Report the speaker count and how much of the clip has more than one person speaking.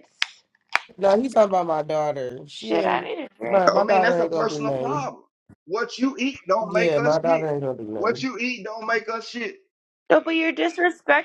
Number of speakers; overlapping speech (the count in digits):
3, about 28%